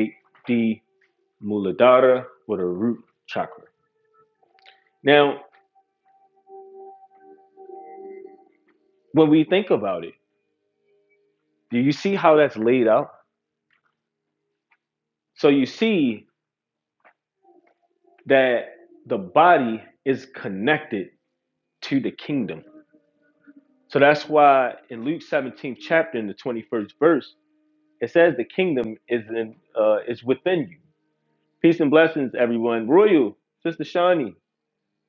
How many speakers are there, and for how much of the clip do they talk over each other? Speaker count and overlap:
1, no overlap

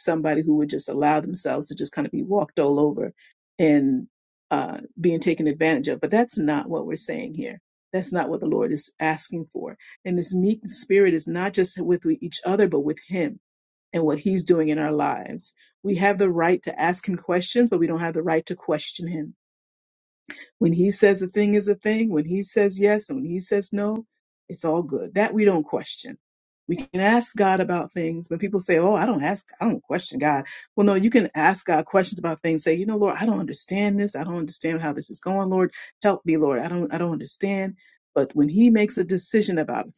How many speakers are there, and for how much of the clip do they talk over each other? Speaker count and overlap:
1, no overlap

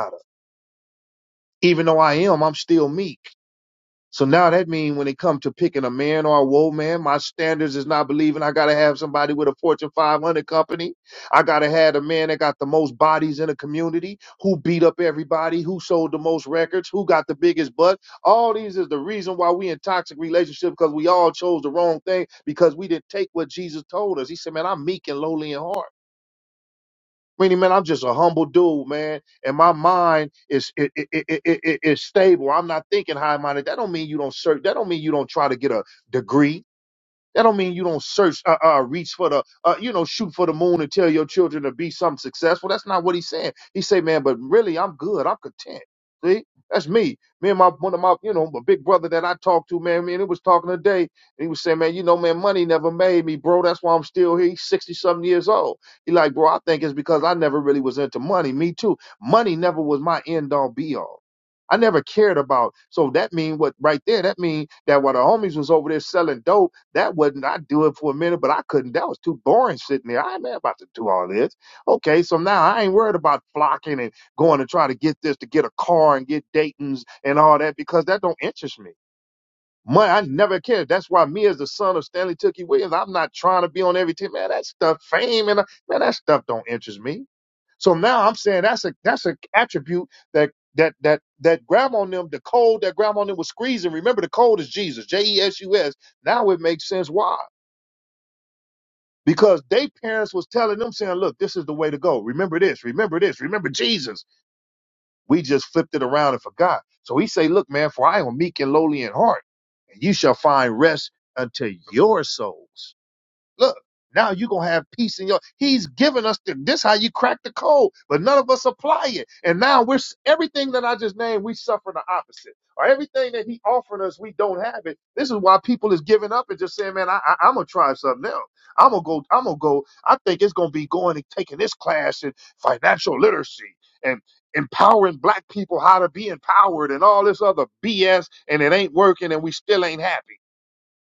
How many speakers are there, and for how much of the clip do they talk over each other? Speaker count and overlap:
1, no overlap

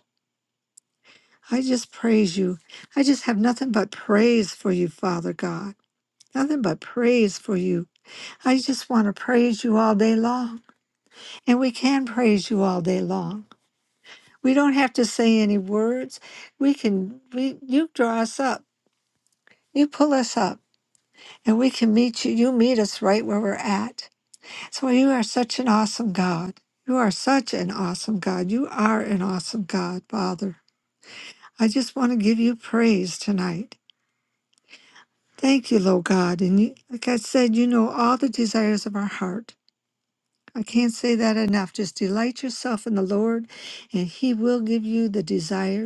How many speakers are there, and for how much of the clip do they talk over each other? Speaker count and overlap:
1, no overlap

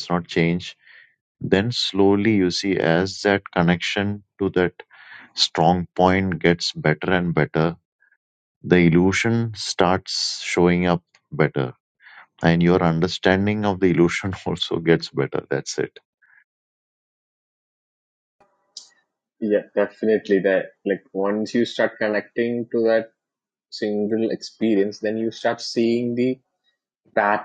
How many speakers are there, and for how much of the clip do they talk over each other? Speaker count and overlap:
2, no overlap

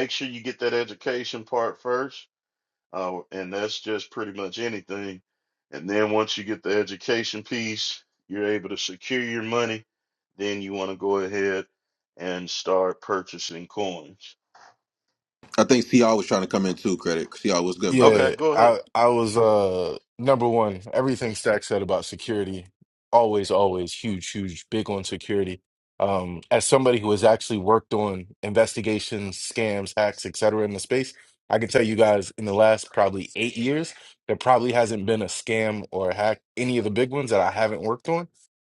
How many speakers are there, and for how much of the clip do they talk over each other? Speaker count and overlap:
3, about 2%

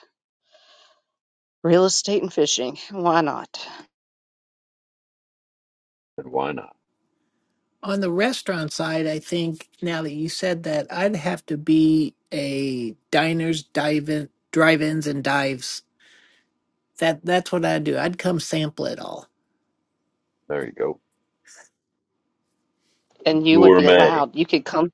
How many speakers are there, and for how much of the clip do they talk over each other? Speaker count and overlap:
3, about 3%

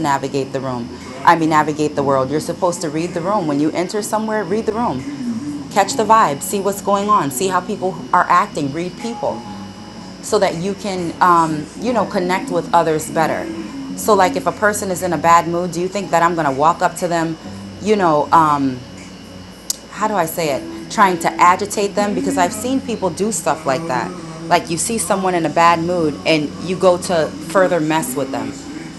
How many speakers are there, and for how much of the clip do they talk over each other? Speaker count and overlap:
1, no overlap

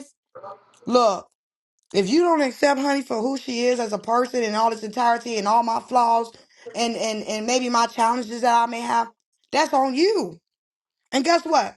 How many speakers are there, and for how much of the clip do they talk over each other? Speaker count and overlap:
1, no overlap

